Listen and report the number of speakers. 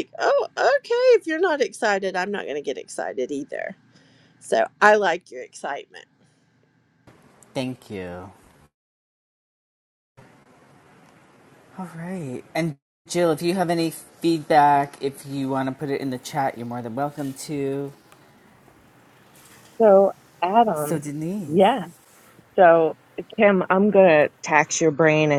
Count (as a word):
three